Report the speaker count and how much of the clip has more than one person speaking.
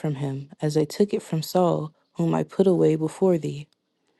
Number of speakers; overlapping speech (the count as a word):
one, no overlap